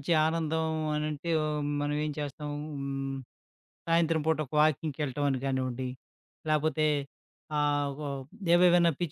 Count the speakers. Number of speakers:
1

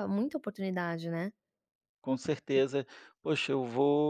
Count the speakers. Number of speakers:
2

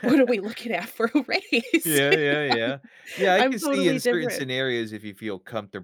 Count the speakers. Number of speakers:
2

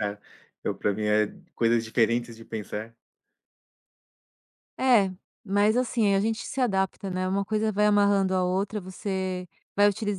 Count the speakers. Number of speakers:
2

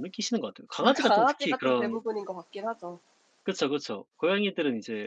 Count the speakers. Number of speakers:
2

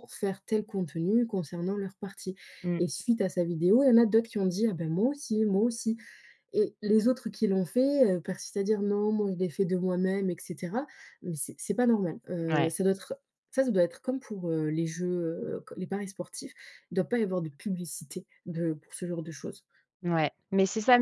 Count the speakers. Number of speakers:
2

